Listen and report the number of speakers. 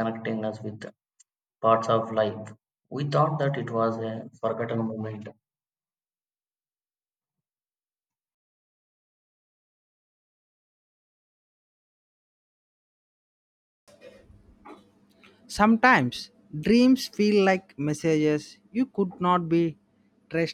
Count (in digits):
2